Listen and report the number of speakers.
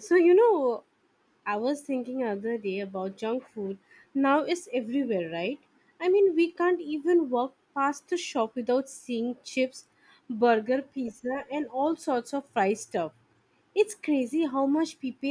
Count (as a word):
one